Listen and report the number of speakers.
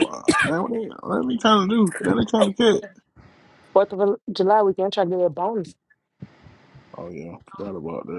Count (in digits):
2